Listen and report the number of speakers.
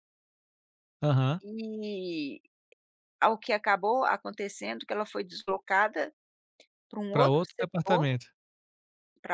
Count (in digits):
2